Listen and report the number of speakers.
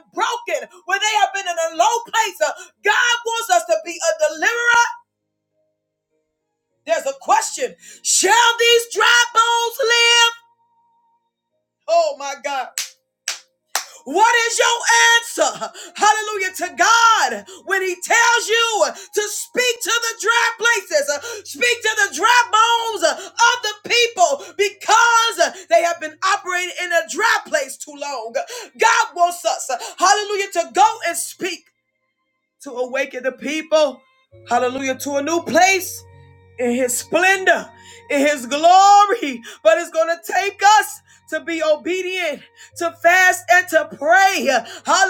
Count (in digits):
1